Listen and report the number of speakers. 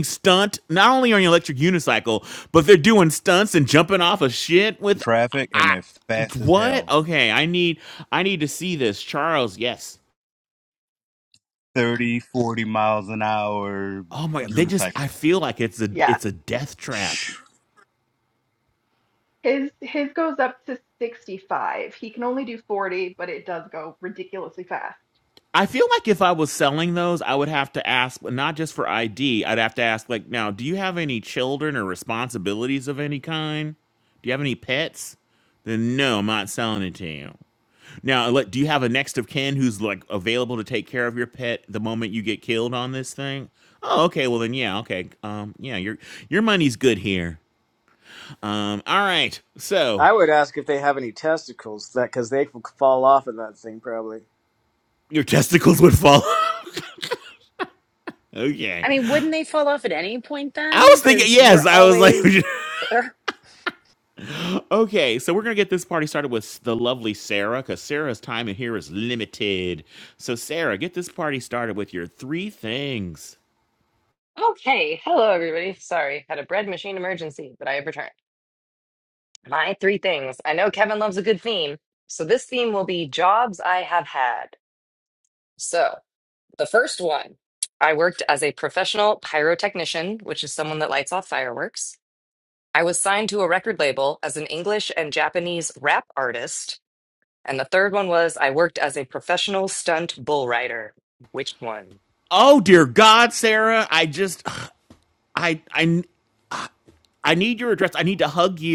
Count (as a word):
six